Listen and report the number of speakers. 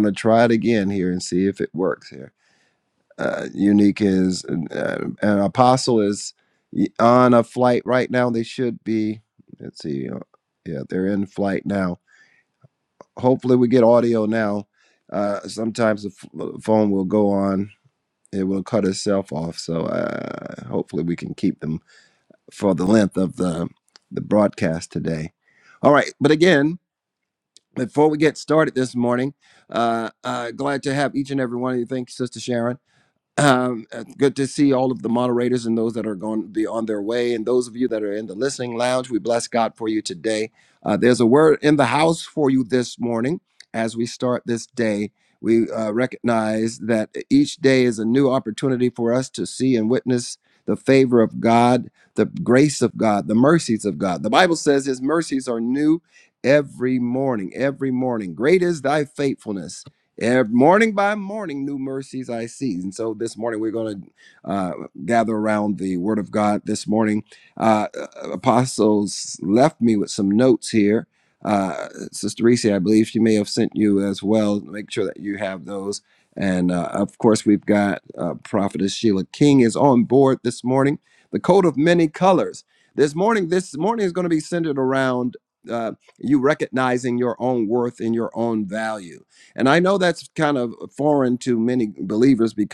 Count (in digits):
1